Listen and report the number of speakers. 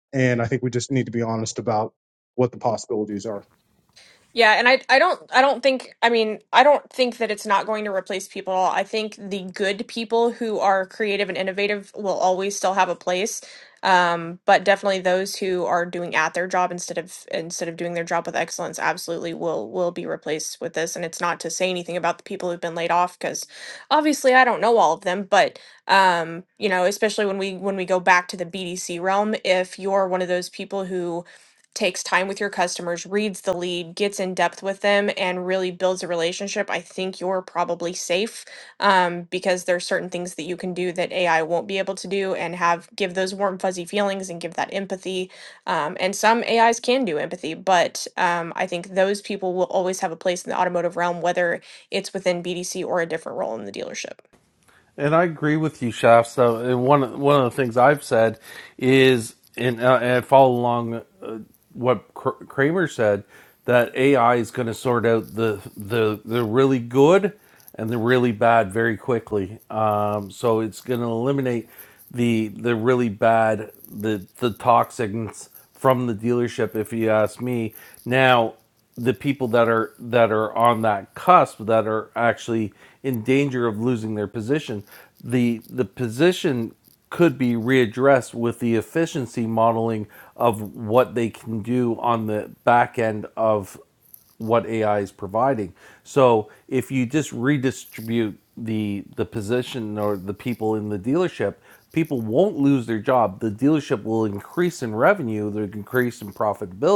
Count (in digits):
3